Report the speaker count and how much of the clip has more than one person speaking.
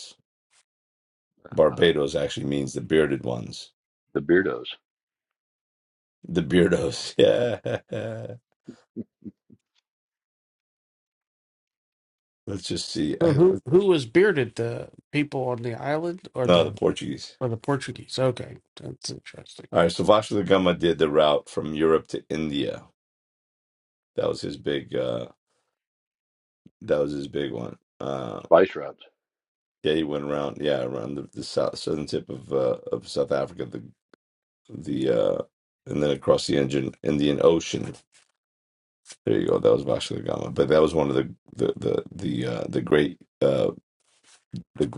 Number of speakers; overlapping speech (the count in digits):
3, about 1%